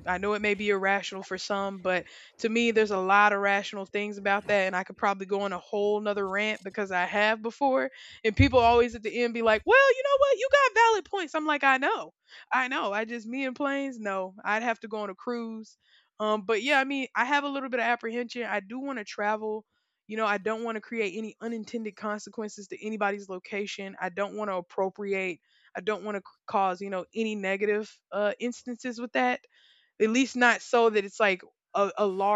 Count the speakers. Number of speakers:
1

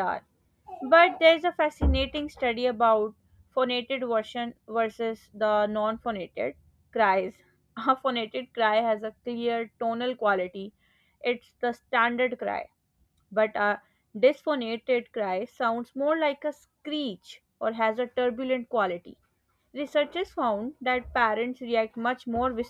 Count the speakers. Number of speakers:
1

